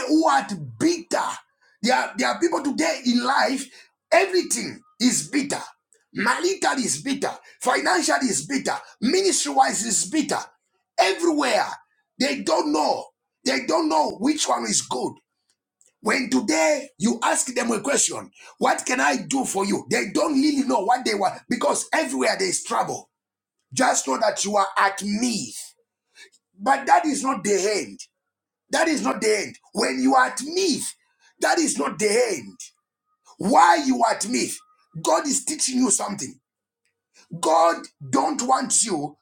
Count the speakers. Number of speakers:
1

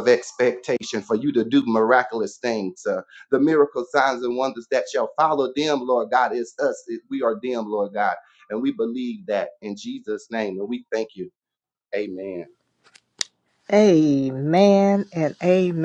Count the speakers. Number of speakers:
2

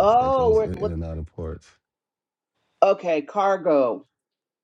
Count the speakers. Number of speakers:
2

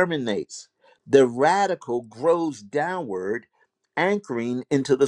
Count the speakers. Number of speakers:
1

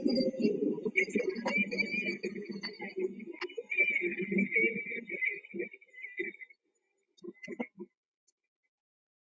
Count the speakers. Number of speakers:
0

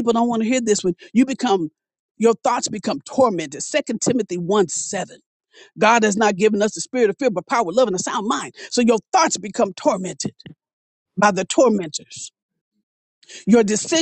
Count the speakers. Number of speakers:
1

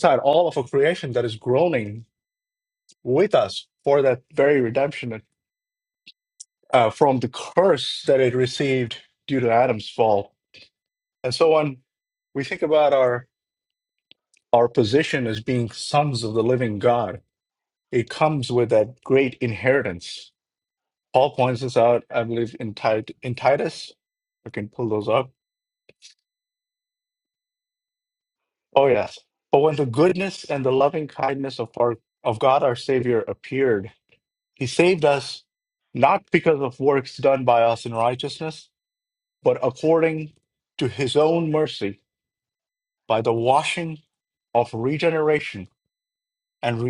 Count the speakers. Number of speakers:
1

